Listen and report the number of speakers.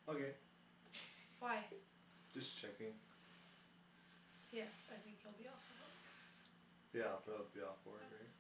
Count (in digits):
2